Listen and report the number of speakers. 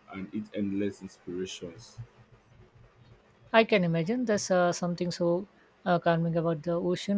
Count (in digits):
2